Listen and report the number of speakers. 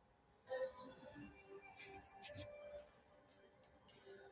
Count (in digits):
0